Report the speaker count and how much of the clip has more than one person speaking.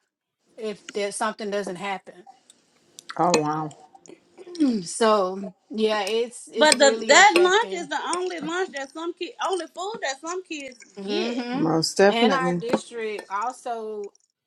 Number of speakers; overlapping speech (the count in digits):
3, about 16%